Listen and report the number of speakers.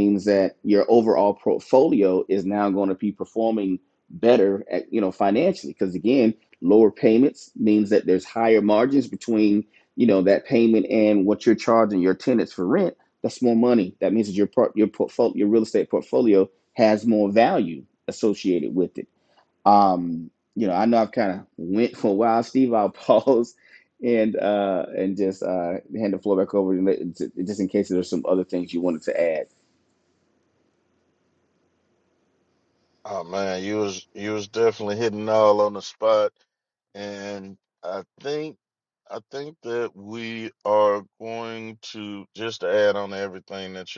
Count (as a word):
two